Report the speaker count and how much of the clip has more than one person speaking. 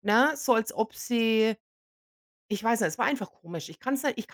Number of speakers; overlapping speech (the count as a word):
one, no overlap